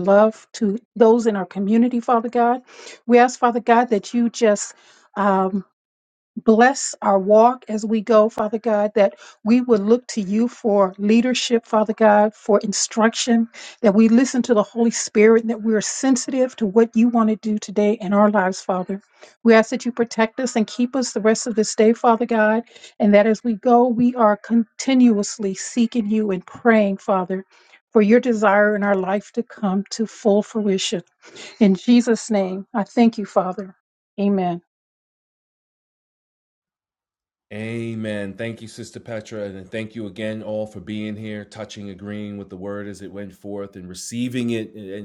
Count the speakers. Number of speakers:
two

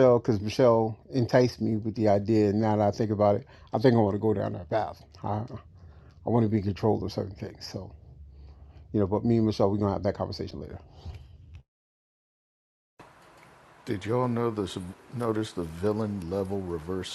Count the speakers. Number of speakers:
two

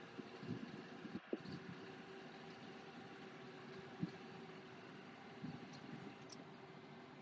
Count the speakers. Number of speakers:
zero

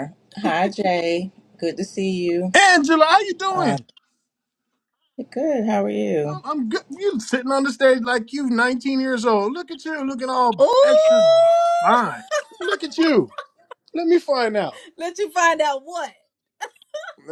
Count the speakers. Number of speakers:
three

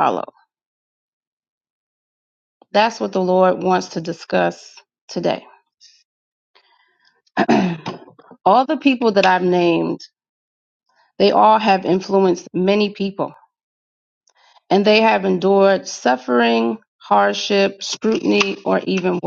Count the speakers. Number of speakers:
one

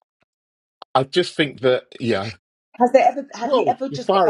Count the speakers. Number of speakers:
two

